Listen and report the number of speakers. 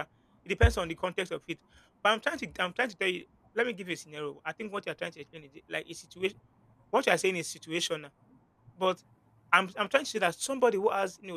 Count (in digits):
1